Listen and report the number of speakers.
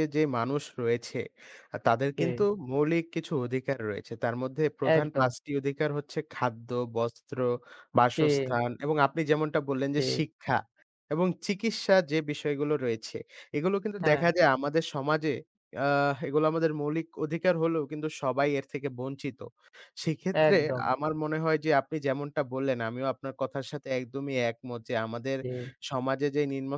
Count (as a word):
two